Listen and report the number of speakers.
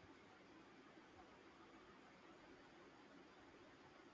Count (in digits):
0